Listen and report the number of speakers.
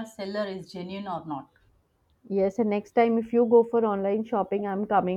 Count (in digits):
2